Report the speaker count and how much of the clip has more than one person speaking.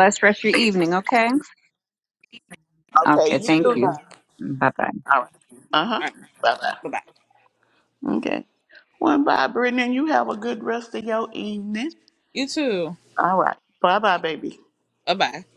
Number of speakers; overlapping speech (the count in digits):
3, about 7%